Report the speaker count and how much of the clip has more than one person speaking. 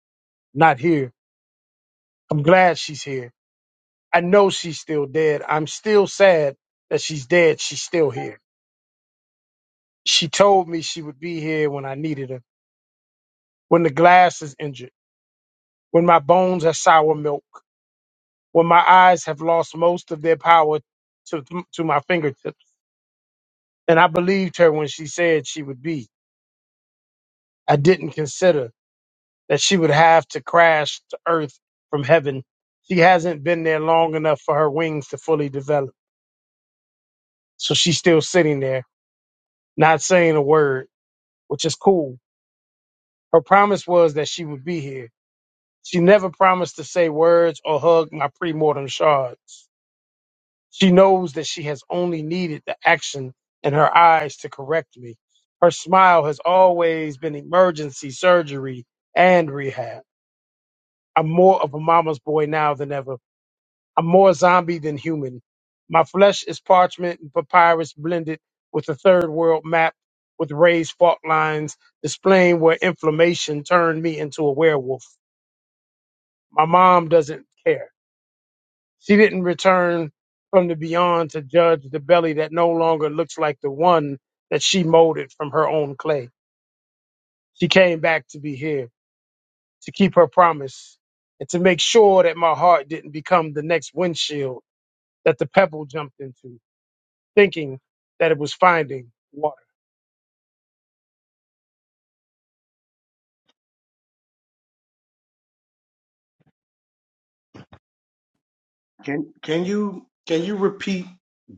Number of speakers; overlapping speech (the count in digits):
2, no overlap